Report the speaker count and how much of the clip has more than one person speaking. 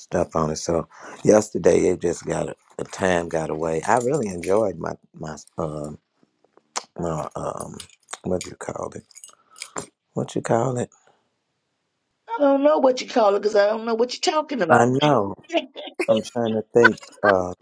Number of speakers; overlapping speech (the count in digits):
2, about 1%